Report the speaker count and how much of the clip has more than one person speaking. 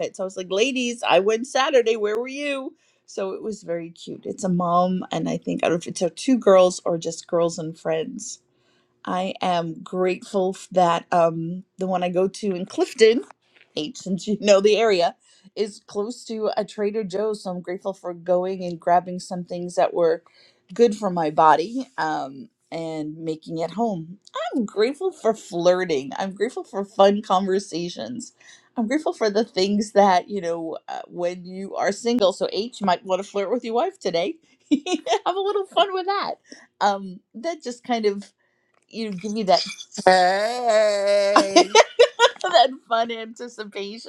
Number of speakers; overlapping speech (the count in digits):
2, no overlap